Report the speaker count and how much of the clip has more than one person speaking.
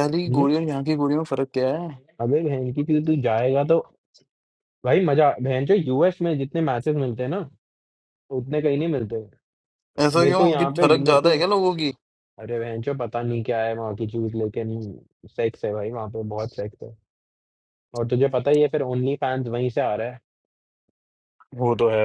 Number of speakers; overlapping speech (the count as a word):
two, about 6%